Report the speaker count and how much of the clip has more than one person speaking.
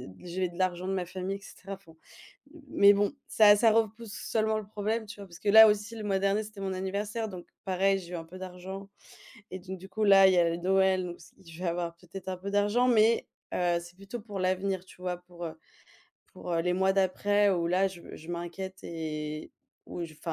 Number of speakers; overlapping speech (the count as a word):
one, no overlap